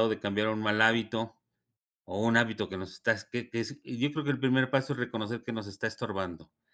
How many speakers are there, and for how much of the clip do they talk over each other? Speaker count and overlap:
one, no overlap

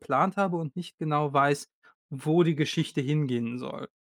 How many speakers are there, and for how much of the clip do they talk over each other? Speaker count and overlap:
one, no overlap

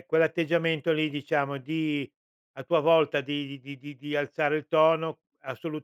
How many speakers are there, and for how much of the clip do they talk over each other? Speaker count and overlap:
one, no overlap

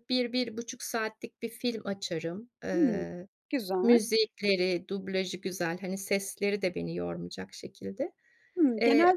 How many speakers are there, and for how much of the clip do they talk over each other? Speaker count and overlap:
two, about 9%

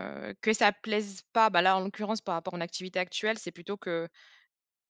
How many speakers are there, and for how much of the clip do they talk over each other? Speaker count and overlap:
one, no overlap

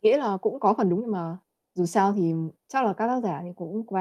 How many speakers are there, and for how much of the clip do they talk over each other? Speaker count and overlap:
one, no overlap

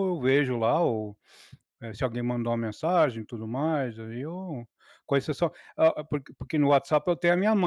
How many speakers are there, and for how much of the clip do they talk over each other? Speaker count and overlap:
one, no overlap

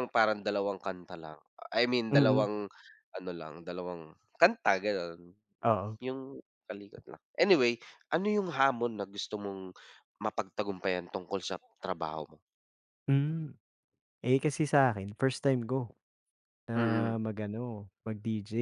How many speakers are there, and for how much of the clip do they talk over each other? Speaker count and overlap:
two, about 4%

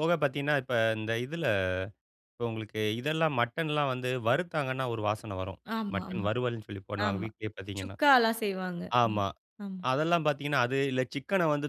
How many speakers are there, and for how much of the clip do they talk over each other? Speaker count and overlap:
two, about 8%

